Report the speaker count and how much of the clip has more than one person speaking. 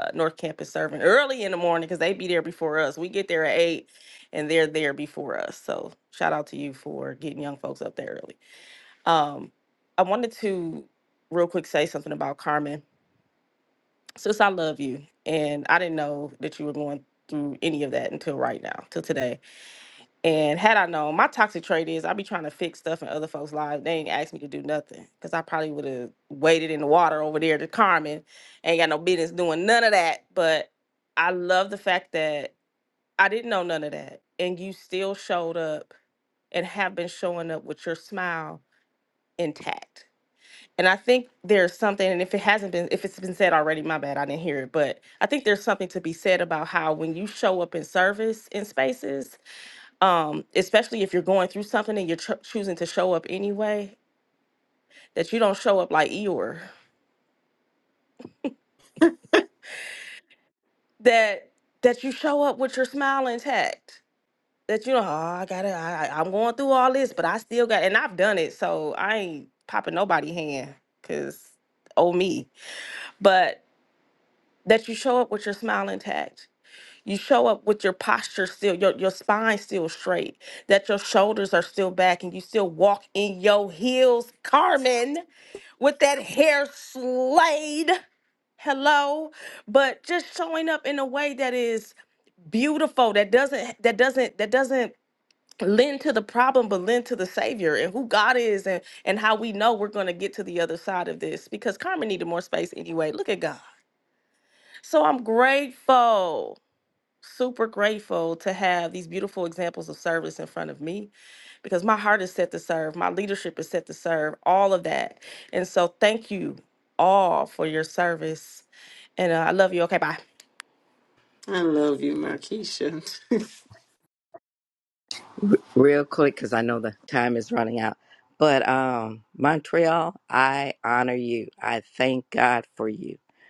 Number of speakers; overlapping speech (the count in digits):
3, no overlap